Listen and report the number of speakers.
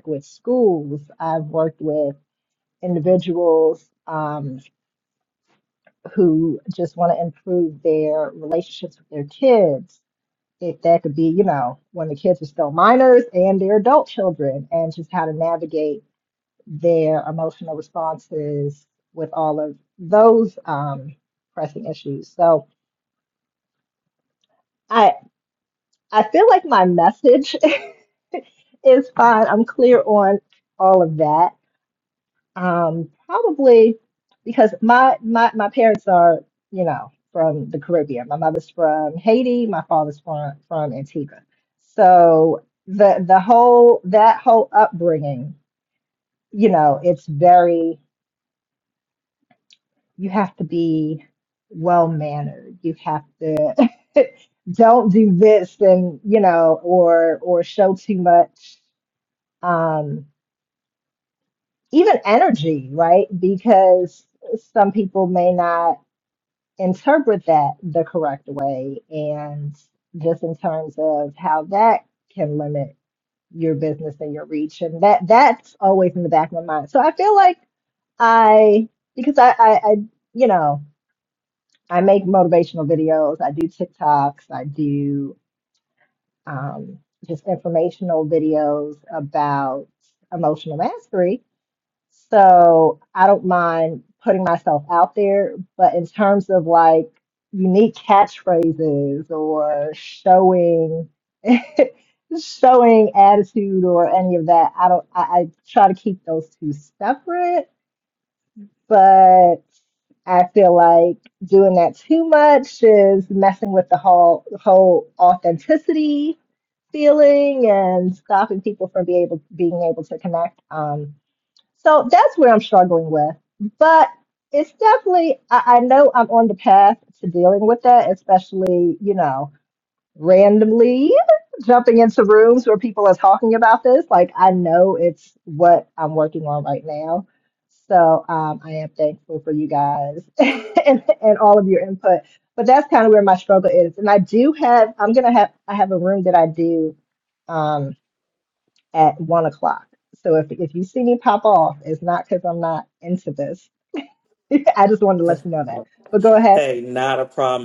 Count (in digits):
2